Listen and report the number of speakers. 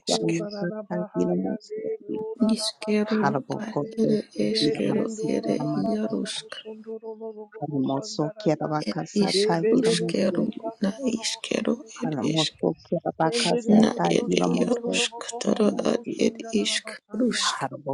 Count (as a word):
three